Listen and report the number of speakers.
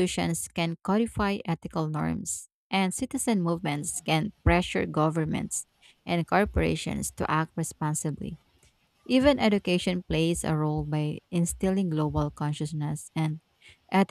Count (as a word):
one